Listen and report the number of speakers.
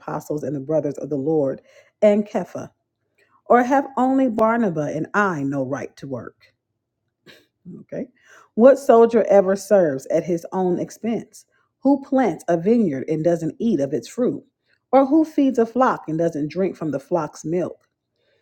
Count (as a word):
one